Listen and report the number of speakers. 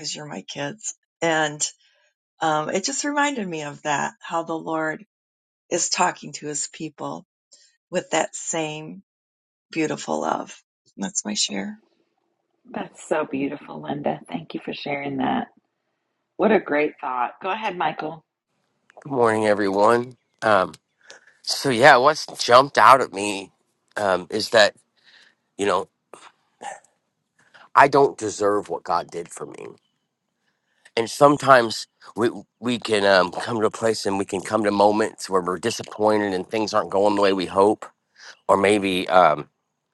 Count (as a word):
three